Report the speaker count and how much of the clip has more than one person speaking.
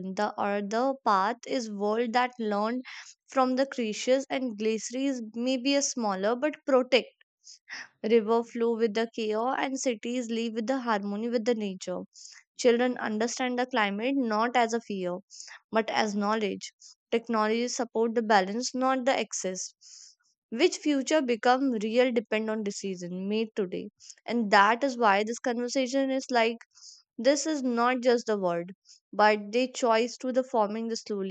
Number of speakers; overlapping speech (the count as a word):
one, no overlap